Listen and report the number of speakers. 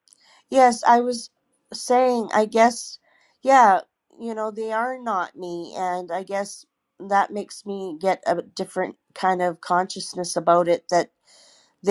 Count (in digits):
1